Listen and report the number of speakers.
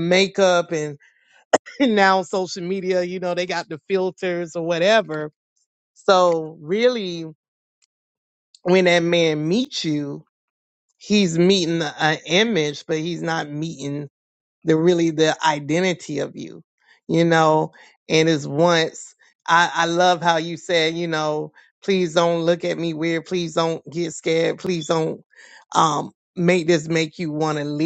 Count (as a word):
one